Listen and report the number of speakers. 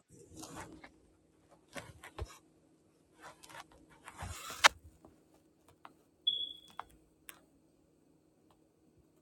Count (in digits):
0